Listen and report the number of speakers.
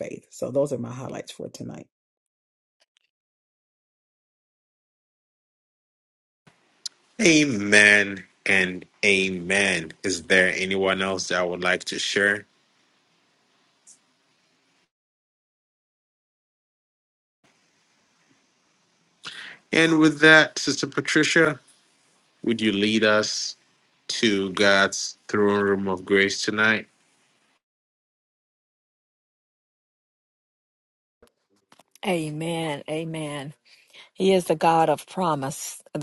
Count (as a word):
three